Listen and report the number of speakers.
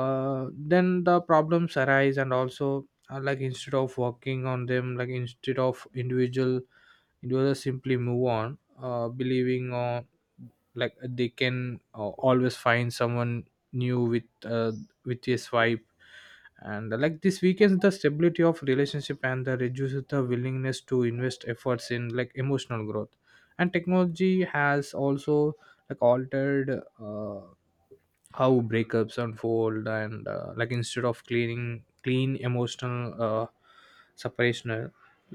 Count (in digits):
1